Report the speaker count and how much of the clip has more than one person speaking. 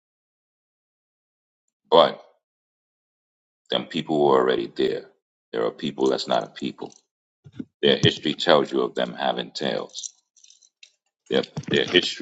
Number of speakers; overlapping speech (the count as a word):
one, no overlap